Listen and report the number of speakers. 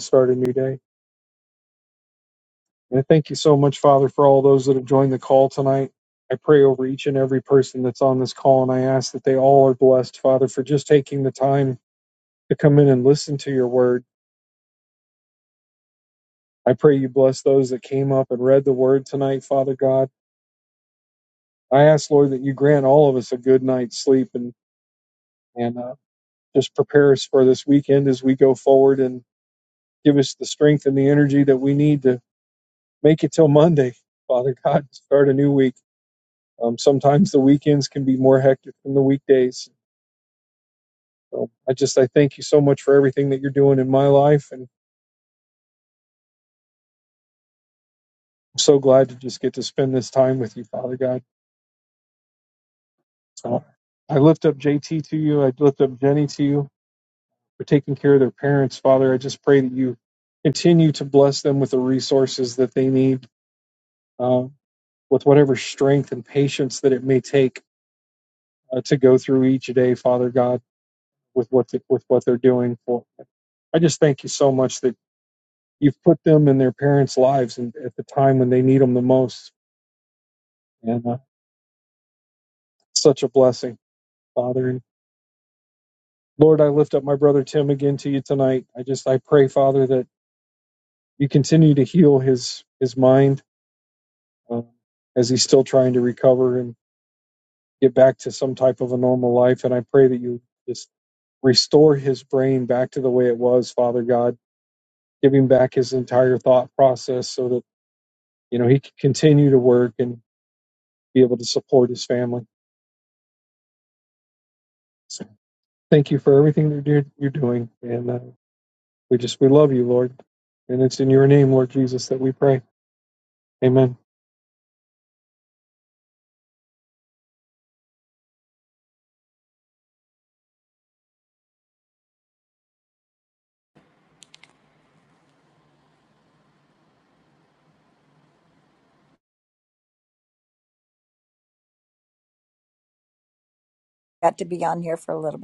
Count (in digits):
2